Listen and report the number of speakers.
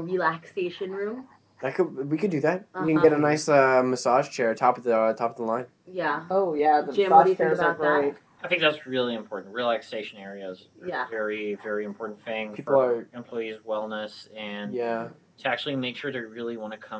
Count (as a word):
four